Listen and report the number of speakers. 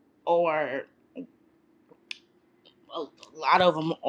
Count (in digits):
1